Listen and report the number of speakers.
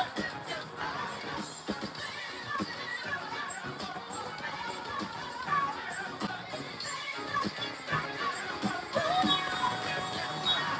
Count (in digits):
0